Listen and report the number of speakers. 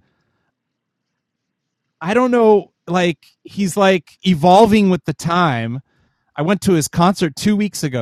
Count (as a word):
one